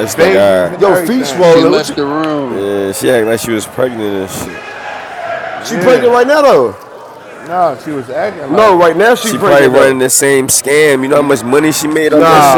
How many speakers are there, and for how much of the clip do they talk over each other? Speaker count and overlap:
4, about 37%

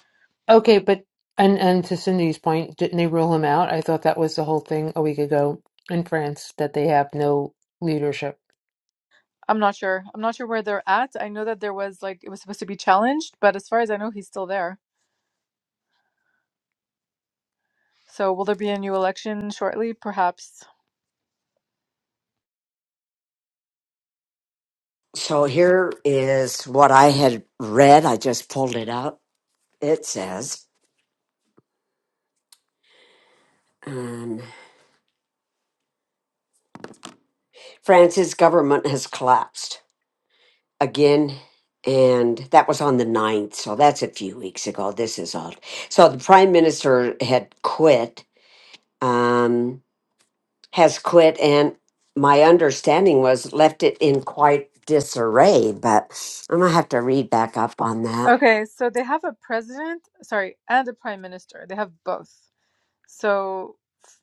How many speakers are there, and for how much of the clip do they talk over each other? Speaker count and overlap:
3, under 1%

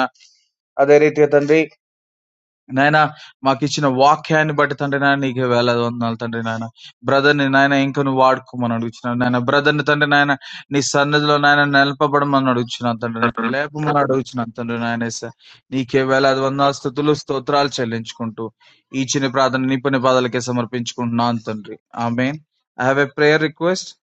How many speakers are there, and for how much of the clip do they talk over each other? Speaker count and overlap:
1, no overlap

